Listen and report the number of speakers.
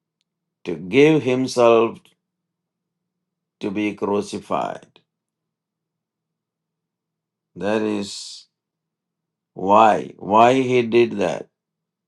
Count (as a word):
one